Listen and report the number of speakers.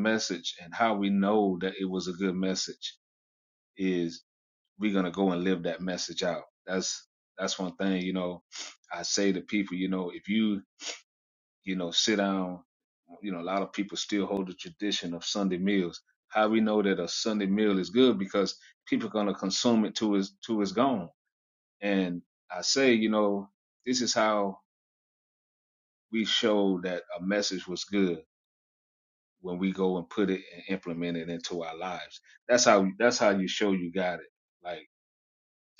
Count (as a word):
one